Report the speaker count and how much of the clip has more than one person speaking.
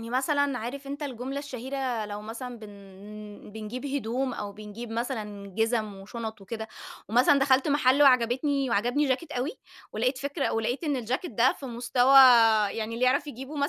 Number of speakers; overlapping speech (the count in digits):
1, no overlap